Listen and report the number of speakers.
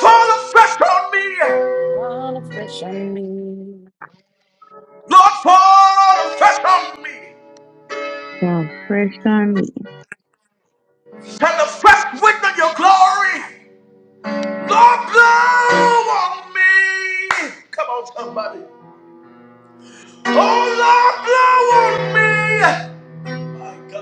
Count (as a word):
three